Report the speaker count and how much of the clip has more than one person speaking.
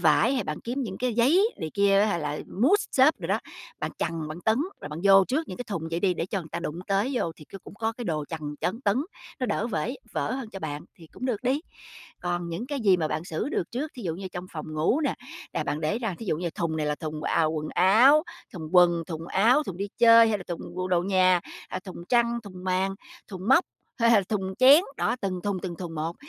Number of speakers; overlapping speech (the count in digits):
1, no overlap